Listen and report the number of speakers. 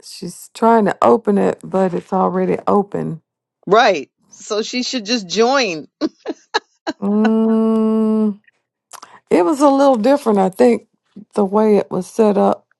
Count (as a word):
two